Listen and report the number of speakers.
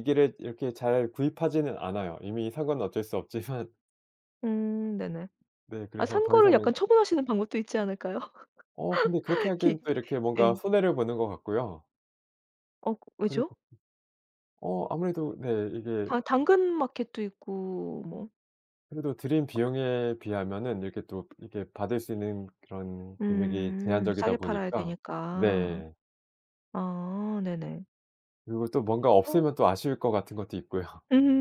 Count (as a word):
two